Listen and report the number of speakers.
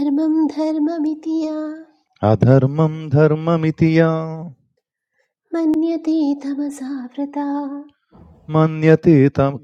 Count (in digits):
2